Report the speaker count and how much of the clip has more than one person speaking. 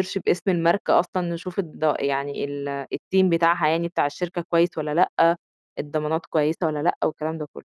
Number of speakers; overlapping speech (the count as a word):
one, no overlap